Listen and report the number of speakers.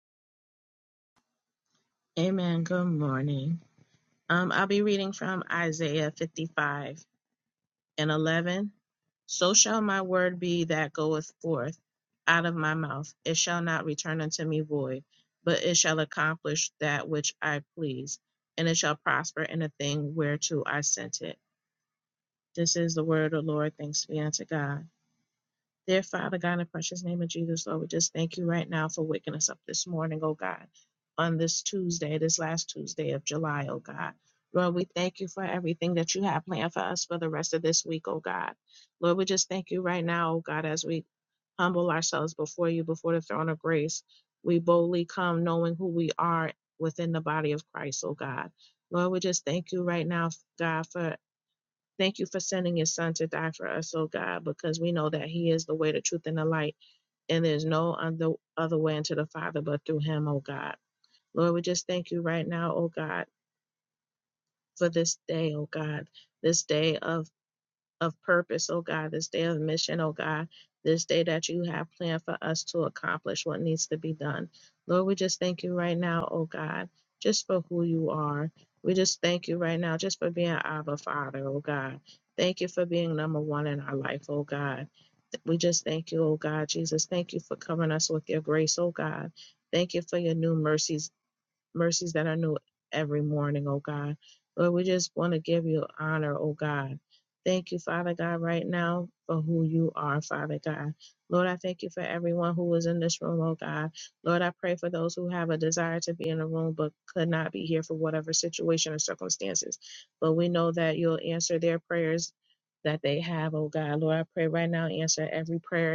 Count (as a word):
one